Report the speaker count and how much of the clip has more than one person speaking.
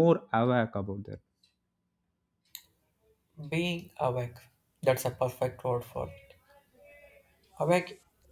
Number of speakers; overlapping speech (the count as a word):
two, no overlap